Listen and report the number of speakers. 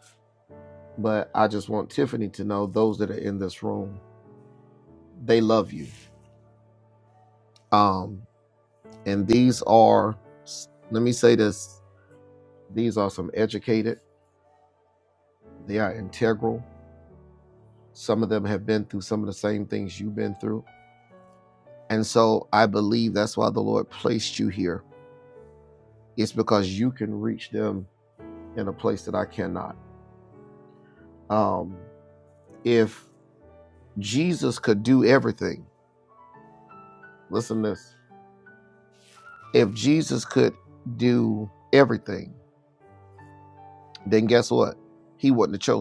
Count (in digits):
1